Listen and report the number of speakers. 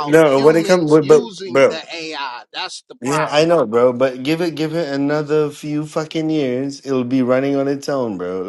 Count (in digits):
2